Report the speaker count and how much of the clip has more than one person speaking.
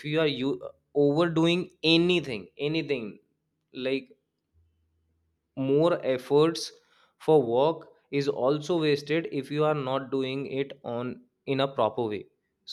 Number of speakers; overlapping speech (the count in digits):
1, no overlap